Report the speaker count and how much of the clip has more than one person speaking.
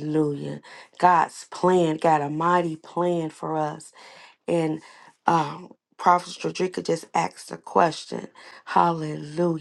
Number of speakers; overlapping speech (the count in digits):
1, no overlap